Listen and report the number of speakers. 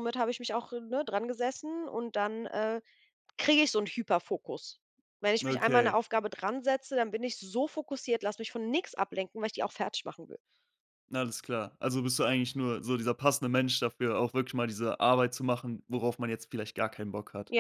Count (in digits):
2